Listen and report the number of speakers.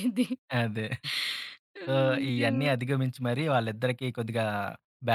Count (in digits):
2